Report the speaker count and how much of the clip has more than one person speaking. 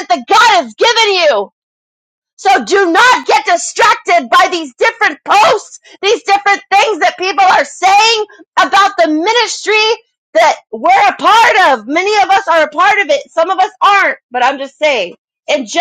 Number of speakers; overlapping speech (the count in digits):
1, no overlap